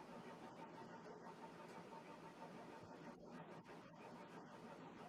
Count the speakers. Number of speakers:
0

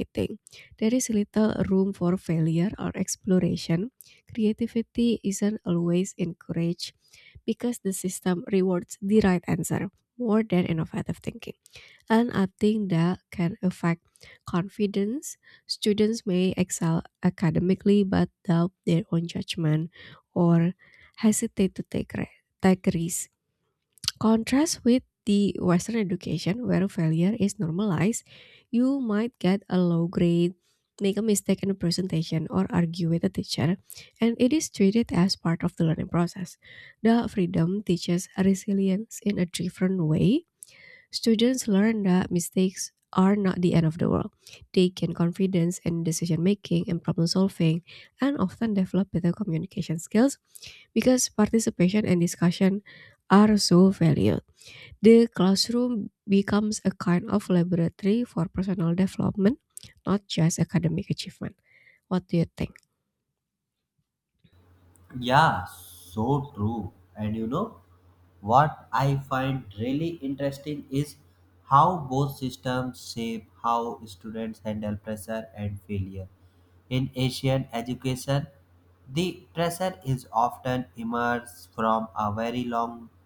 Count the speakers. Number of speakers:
2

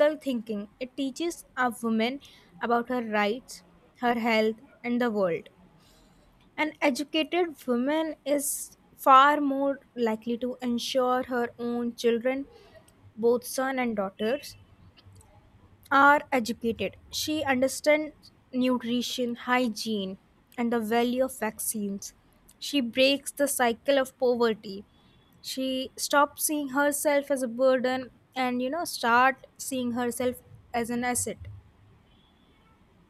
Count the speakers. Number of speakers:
1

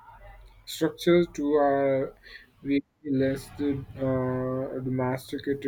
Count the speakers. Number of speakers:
1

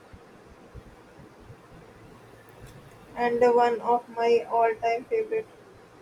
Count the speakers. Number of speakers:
1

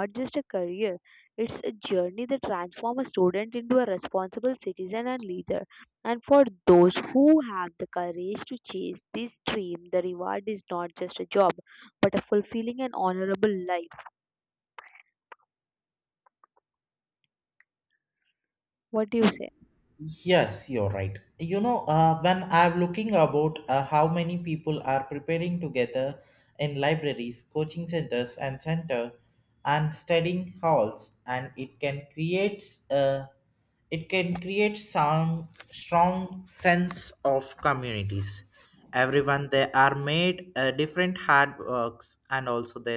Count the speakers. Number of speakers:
2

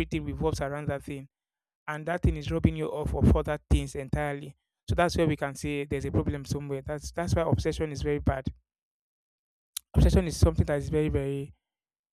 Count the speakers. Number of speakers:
1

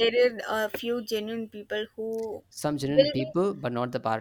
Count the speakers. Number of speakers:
2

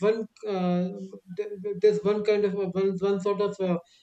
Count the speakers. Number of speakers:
1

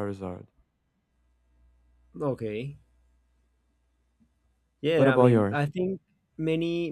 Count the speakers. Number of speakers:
2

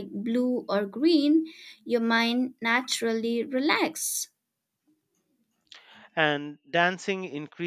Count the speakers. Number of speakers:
2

